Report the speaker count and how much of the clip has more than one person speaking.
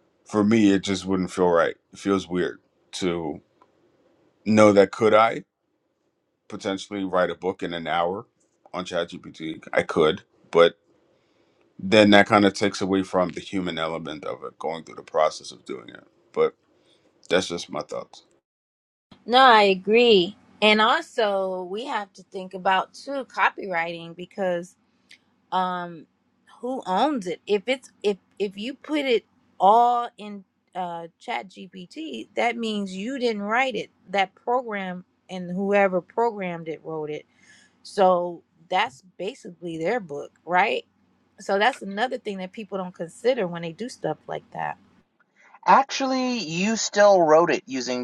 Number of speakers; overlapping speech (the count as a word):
three, no overlap